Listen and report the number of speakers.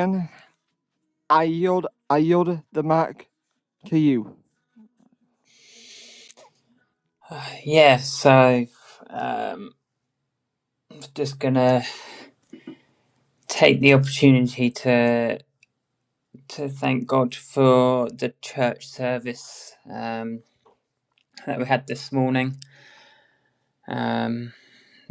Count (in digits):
2